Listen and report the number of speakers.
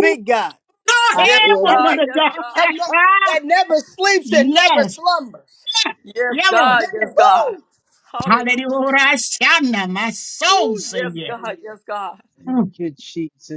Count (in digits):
4